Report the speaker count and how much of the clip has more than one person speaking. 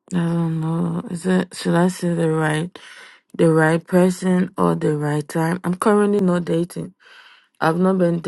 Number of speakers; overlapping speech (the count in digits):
1, no overlap